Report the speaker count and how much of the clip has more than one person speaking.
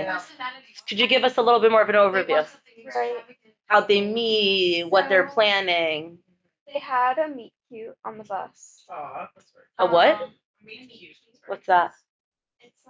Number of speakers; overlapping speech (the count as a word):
four, about 40%